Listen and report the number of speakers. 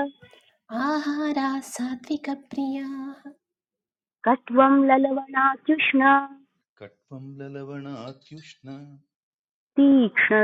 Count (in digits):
3